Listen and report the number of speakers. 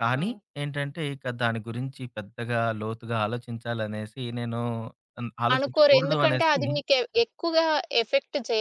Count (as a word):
two